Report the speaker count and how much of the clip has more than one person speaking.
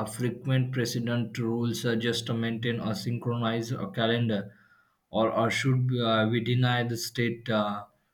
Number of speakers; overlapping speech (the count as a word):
one, no overlap